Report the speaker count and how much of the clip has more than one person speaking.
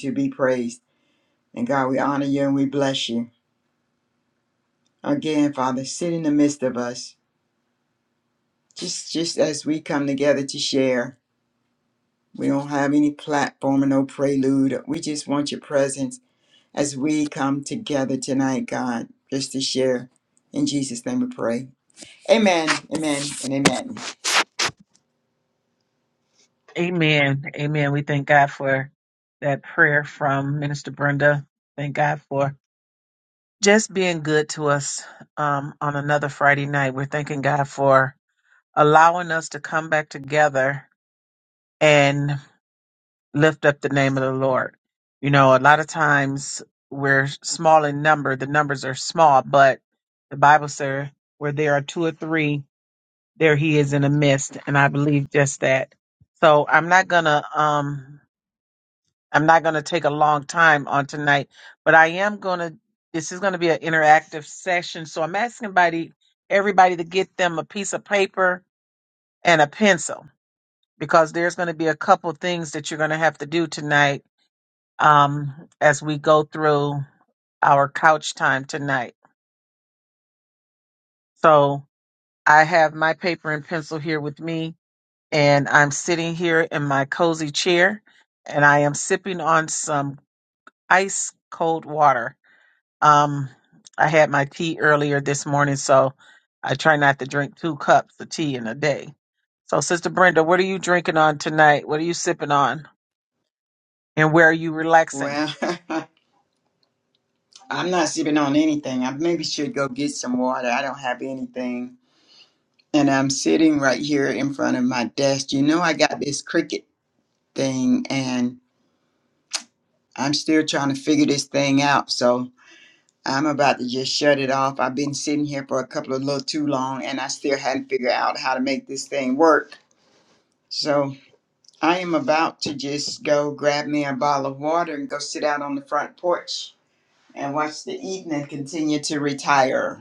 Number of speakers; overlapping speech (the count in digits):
2, under 1%